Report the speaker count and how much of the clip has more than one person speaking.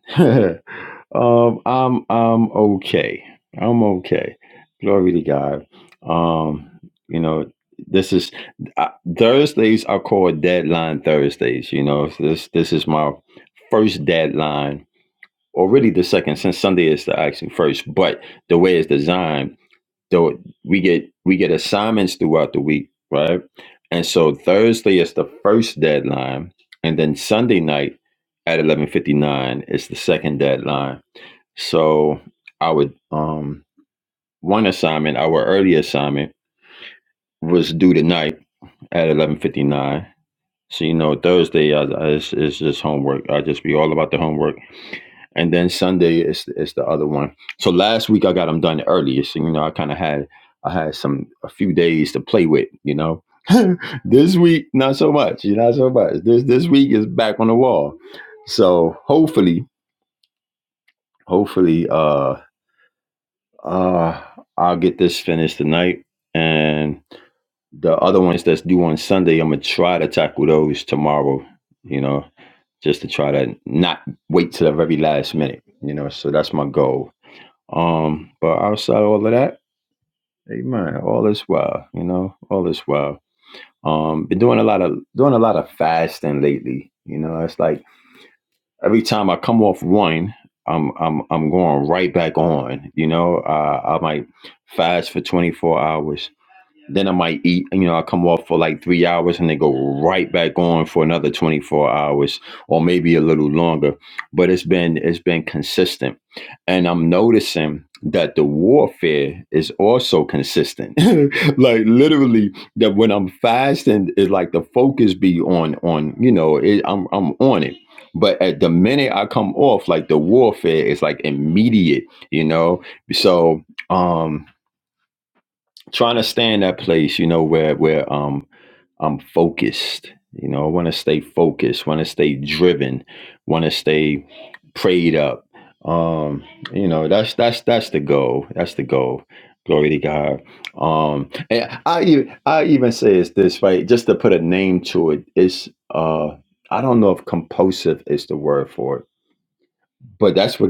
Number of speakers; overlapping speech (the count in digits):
1, no overlap